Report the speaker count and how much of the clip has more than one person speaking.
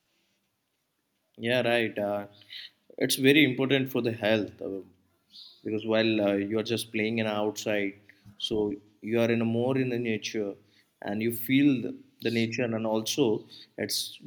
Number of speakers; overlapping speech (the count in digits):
1, no overlap